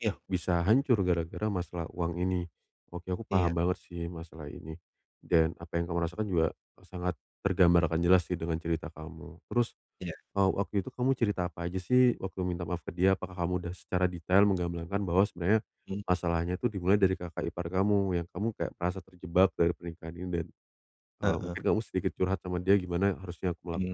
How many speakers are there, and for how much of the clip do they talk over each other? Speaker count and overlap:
two, about 3%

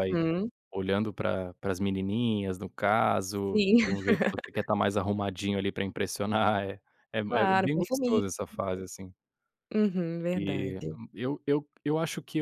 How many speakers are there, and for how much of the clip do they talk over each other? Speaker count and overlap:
two, about 16%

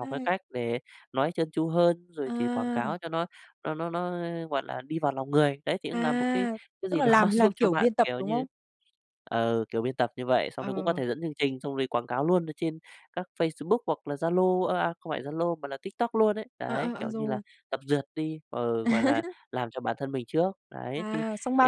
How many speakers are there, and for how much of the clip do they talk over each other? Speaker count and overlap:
two, about 20%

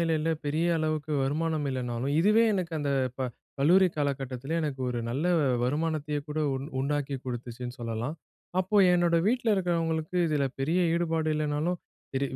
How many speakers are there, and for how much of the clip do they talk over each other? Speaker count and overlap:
one, no overlap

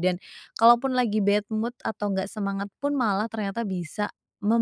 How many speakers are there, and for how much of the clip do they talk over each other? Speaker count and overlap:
one, no overlap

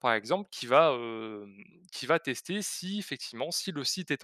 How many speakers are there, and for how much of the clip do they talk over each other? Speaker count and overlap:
one, no overlap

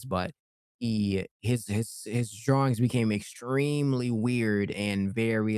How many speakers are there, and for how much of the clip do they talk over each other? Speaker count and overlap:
one, no overlap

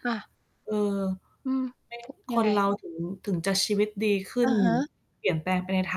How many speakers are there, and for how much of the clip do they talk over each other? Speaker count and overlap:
two, about 11%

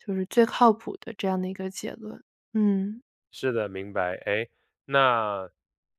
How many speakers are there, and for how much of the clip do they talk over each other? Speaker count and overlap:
two, no overlap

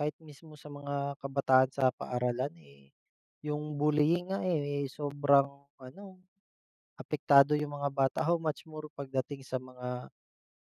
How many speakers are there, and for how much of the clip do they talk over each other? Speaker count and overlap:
one, no overlap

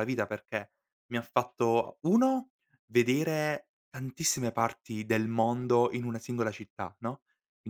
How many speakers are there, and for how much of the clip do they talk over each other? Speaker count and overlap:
one, no overlap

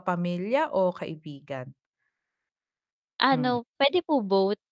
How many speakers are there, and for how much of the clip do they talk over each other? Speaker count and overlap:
two, about 6%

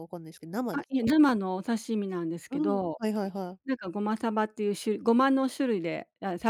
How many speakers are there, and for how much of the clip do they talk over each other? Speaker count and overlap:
two, about 12%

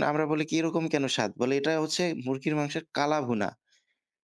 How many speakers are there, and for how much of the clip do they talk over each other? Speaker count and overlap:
one, no overlap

